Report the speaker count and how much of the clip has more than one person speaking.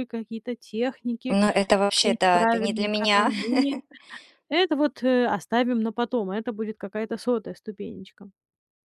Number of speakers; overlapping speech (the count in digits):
2, about 17%